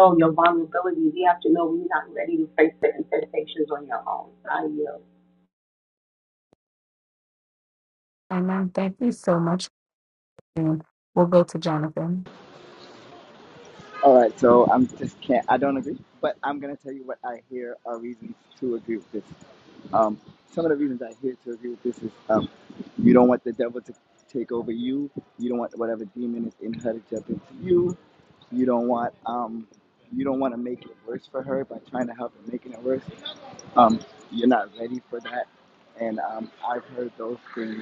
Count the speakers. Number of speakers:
3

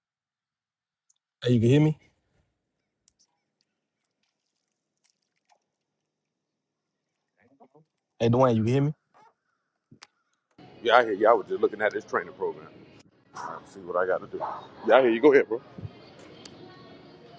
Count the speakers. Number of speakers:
2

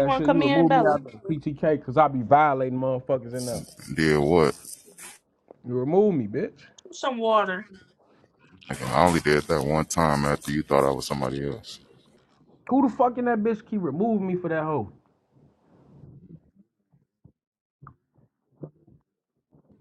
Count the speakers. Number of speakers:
3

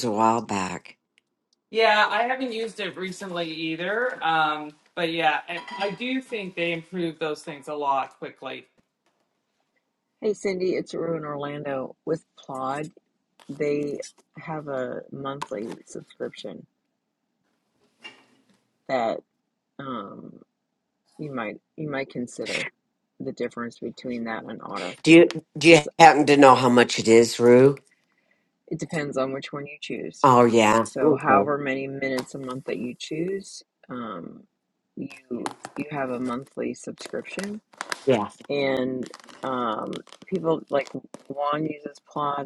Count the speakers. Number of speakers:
3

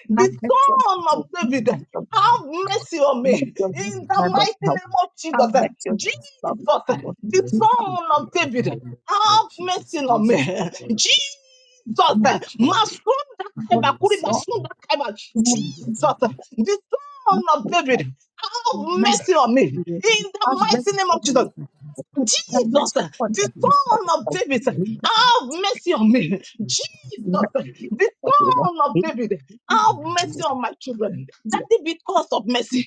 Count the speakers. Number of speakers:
3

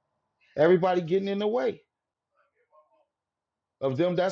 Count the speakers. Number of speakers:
1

